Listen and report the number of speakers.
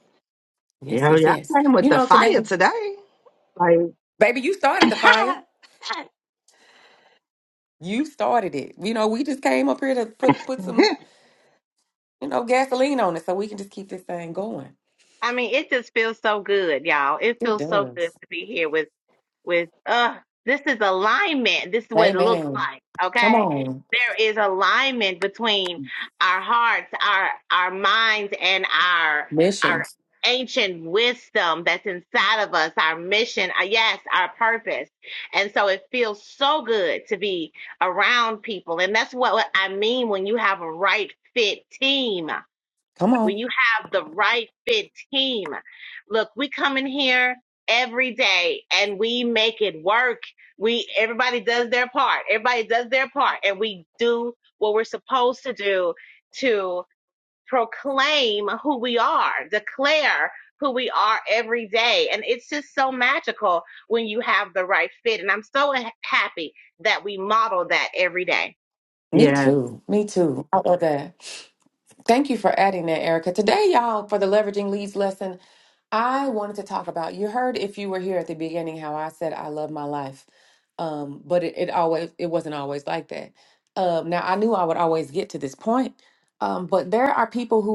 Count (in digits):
3